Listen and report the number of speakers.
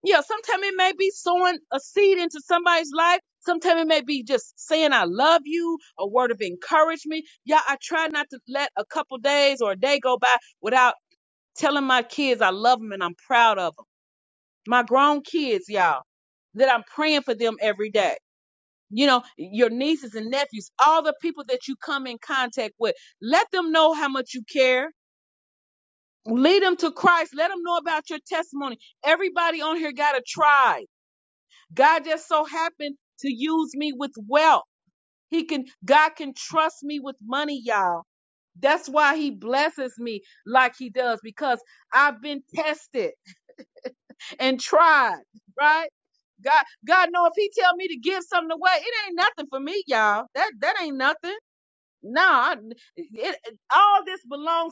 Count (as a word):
one